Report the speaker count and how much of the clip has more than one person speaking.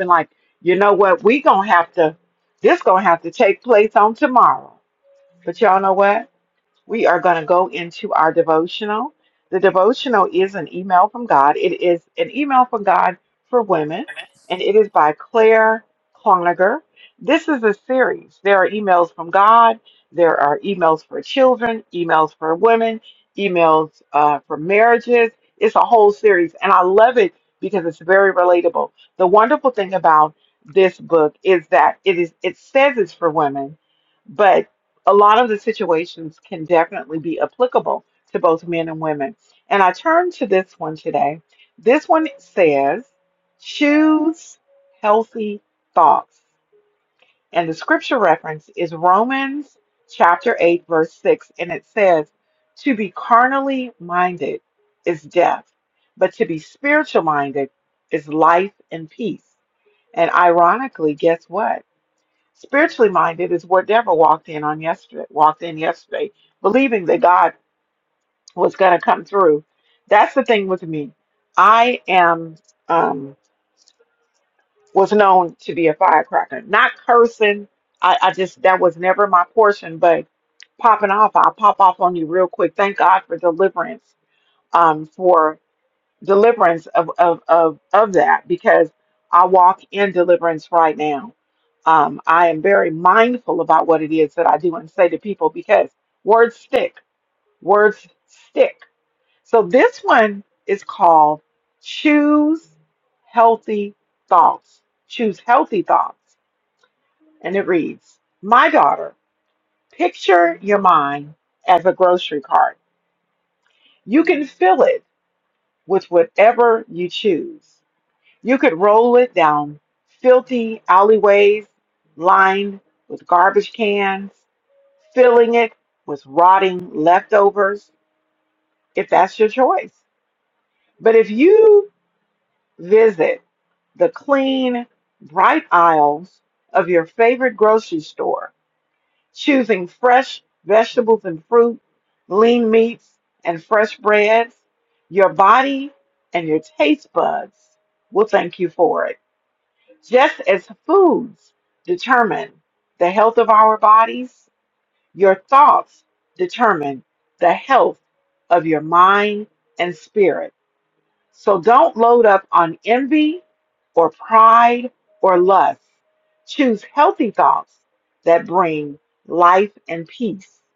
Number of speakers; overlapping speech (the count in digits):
1, no overlap